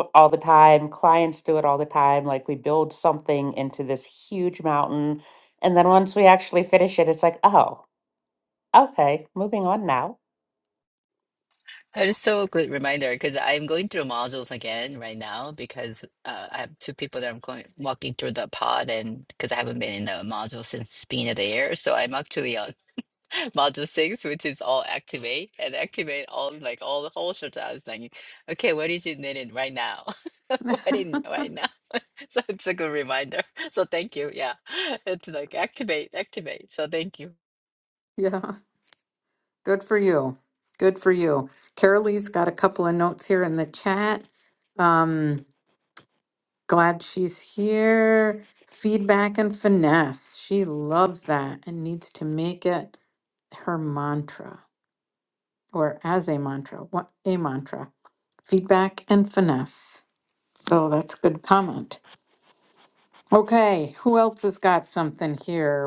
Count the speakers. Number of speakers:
3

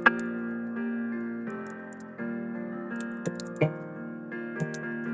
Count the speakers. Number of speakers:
0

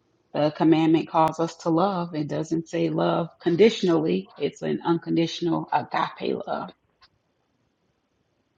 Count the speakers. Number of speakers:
1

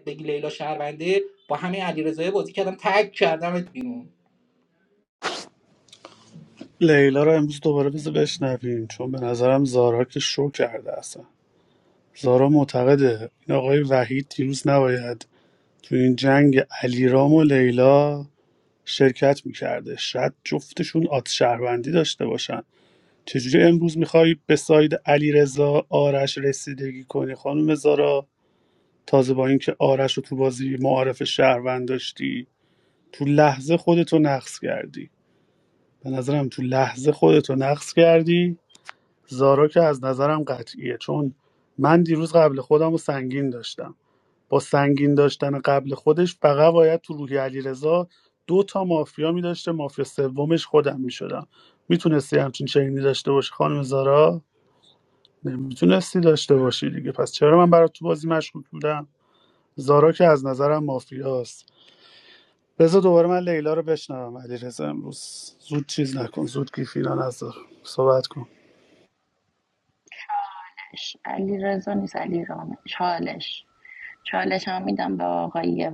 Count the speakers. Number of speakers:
3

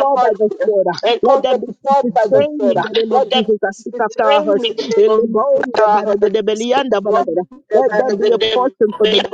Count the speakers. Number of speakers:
2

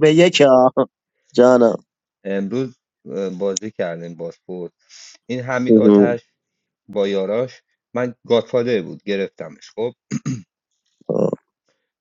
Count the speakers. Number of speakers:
2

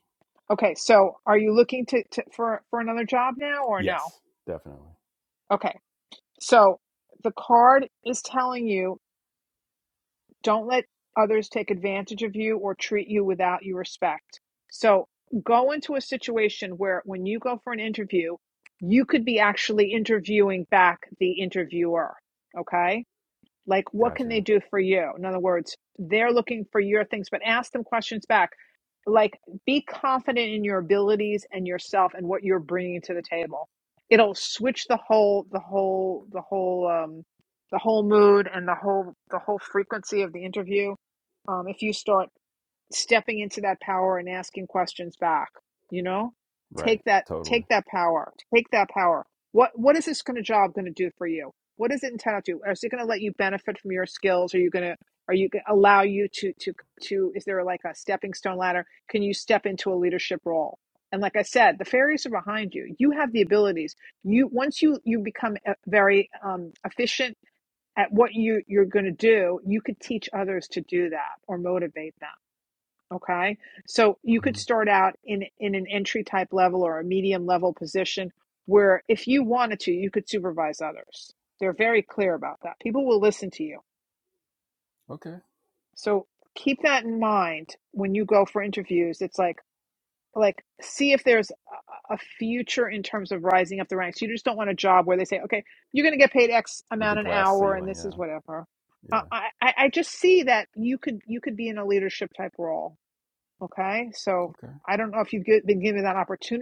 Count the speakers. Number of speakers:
2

